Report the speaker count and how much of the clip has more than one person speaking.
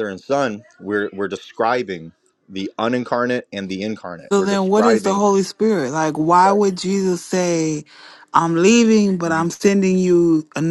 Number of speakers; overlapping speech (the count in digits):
2, about 12%